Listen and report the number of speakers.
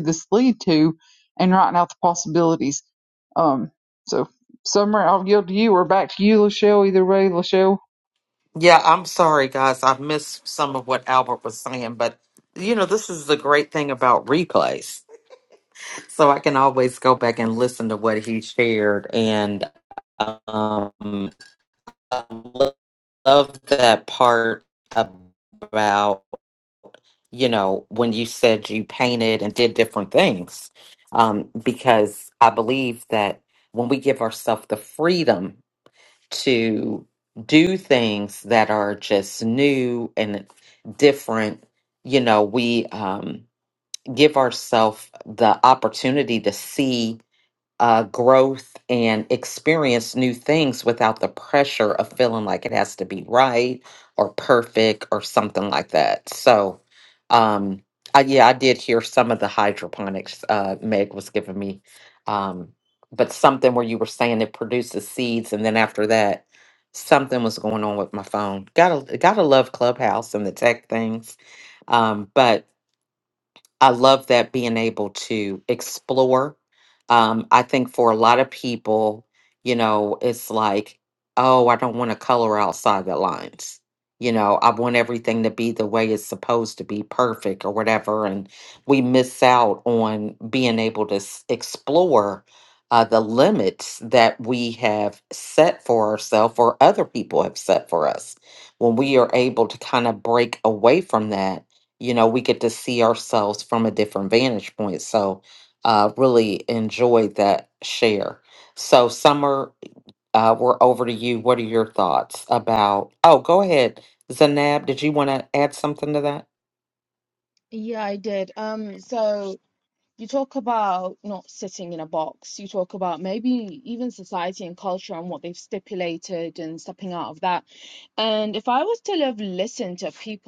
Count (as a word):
three